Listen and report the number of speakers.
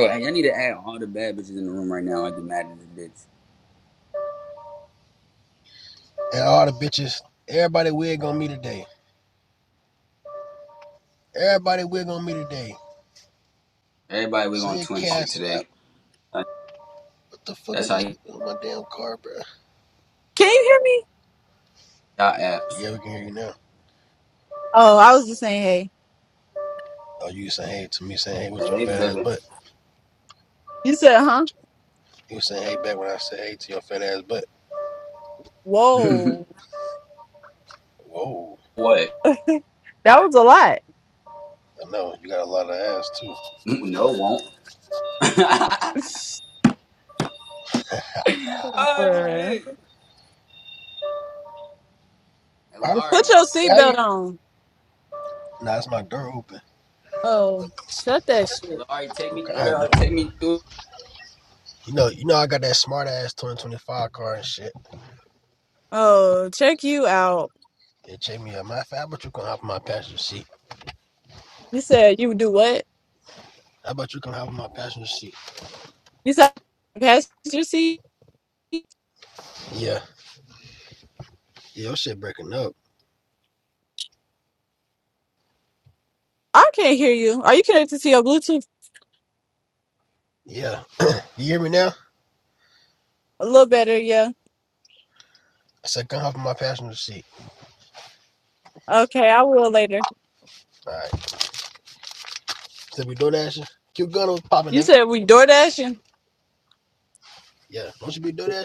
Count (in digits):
3